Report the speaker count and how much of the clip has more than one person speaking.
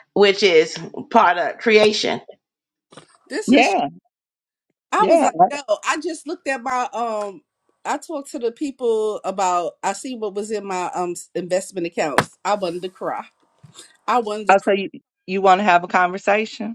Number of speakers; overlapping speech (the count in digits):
3, about 5%